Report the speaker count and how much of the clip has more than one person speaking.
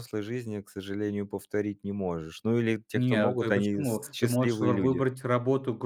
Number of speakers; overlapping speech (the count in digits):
2, about 36%